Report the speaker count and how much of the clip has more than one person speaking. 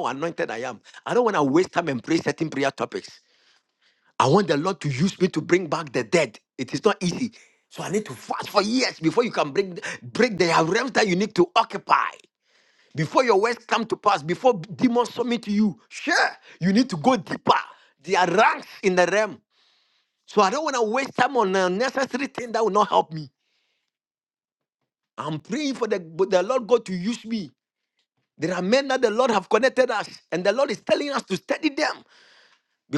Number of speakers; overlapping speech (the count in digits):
1, no overlap